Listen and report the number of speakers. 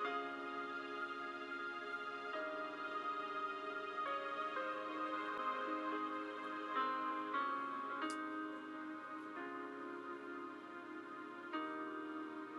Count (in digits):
0